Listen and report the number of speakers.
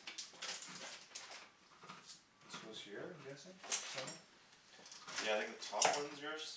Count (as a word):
two